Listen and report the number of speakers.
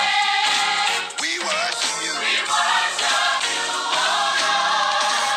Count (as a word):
zero